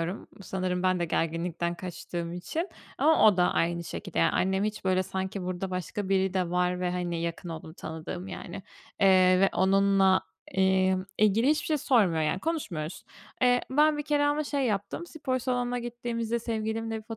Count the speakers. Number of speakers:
1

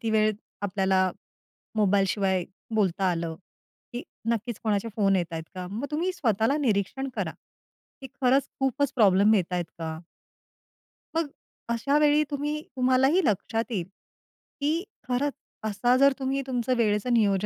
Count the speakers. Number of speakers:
1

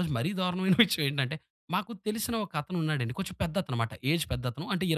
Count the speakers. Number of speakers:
1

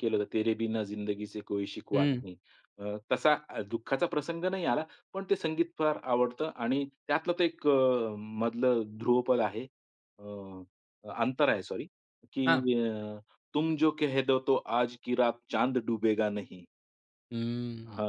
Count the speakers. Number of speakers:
2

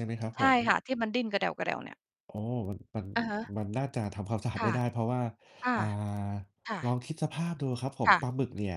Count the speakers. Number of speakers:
2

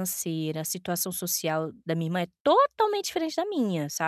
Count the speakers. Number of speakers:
1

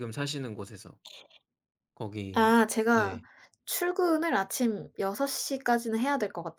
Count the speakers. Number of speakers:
2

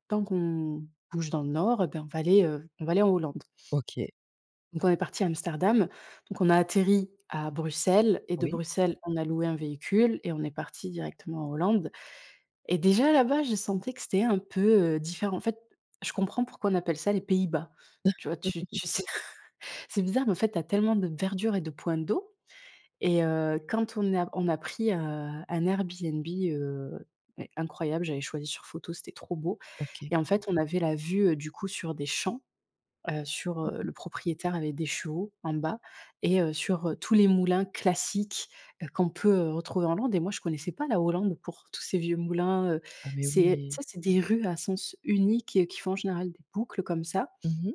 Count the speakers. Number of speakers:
2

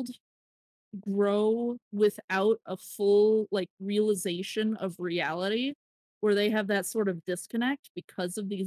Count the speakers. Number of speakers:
1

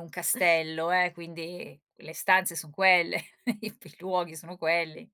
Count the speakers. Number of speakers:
1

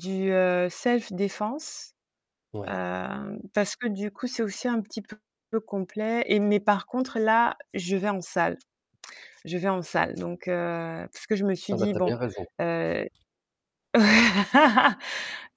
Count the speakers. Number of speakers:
2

